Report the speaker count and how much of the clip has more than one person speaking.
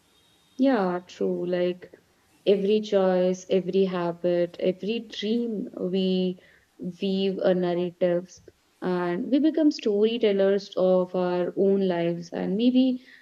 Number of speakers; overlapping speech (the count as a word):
one, no overlap